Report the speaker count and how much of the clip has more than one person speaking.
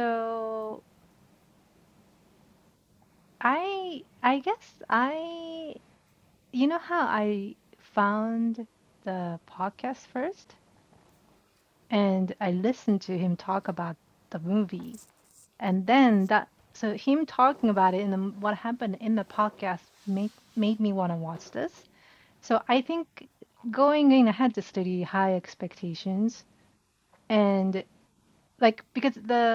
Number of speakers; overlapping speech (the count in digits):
1, no overlap